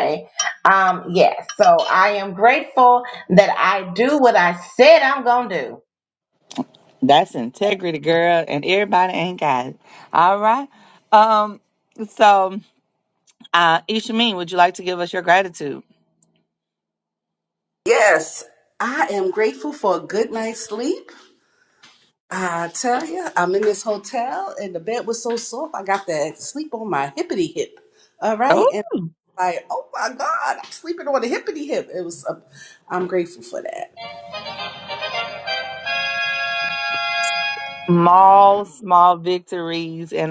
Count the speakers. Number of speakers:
three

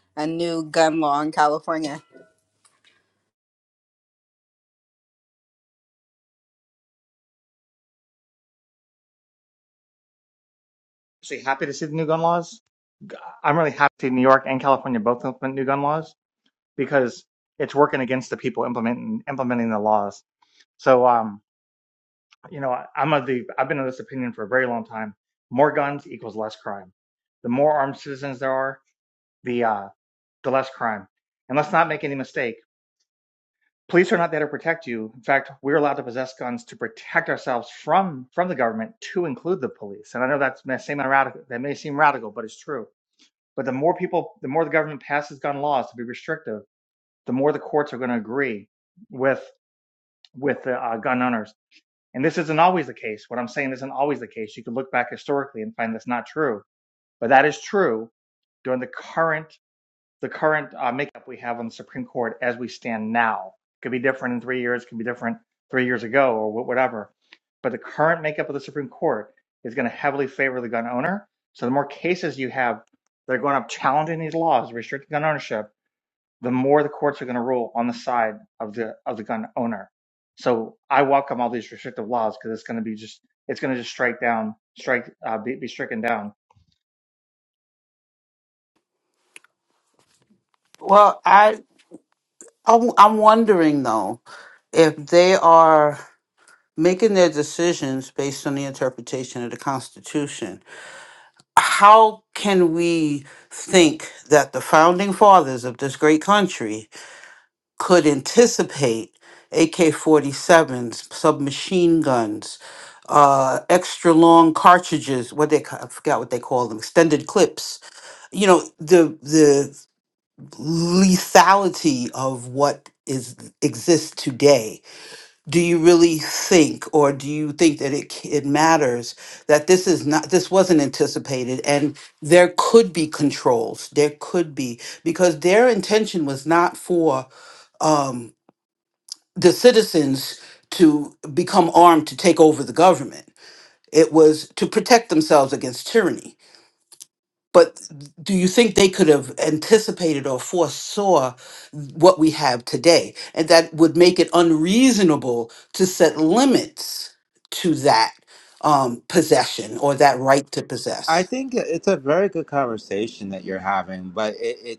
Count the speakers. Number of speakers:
four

